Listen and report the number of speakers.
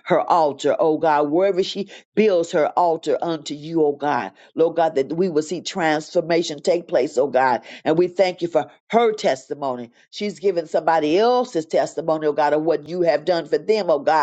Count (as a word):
one